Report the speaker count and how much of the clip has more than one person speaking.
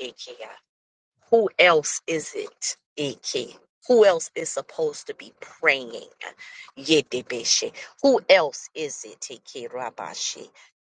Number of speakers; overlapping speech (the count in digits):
1, no overlap